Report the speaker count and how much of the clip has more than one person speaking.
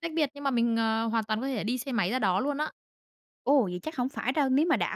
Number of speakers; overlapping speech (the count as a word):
two, no overlap